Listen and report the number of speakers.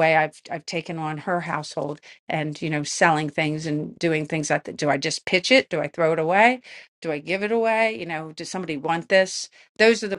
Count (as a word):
one